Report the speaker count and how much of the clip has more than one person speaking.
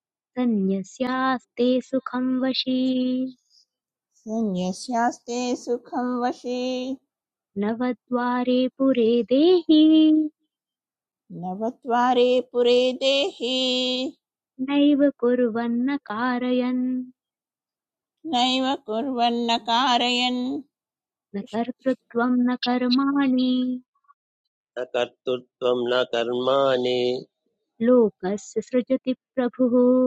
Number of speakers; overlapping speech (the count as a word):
three, no overlap